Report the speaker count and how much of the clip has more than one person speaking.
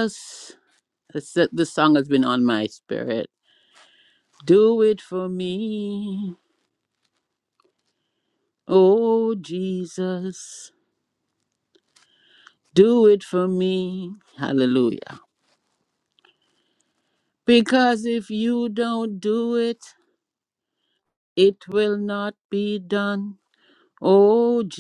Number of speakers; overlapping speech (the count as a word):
one, no overlap